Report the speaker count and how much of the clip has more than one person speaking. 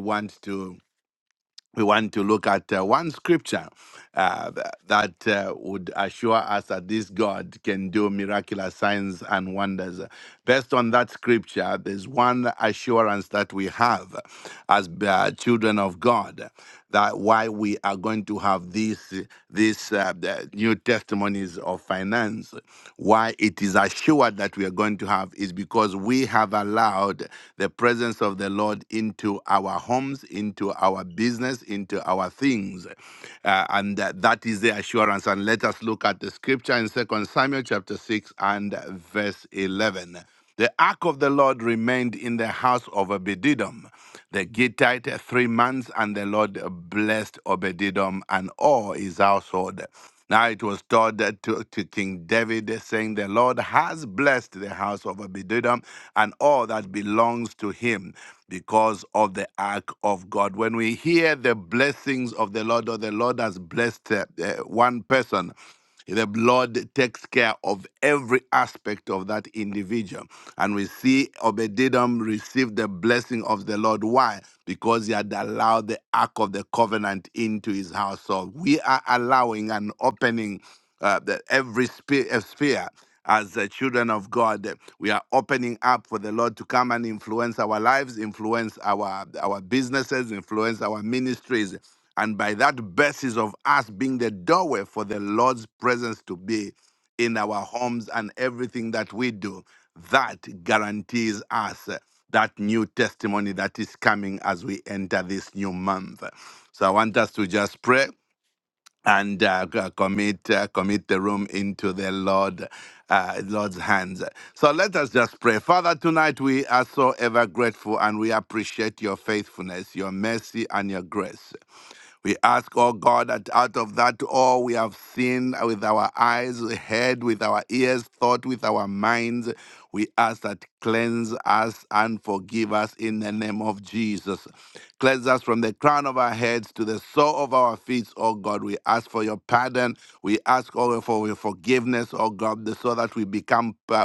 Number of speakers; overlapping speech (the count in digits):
1, no overlap